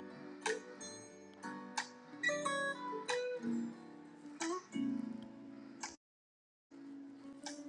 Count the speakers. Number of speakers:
zero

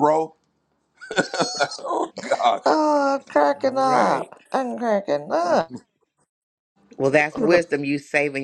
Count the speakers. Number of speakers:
three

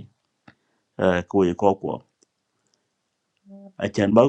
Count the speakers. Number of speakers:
one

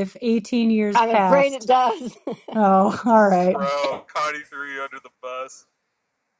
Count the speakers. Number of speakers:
three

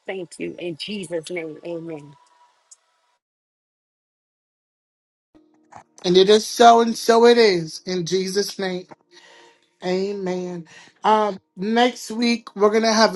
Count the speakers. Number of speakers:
two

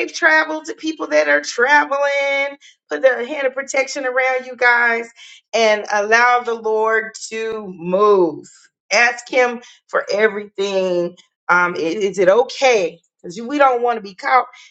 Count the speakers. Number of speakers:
one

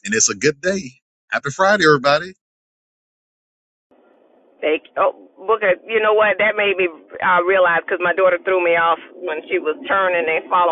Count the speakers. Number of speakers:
two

